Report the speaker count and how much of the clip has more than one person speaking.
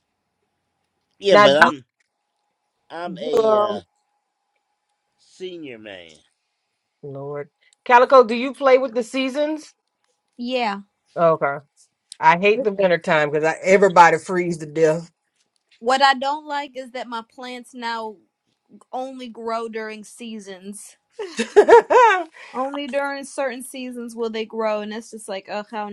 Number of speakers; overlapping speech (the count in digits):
3, about 3%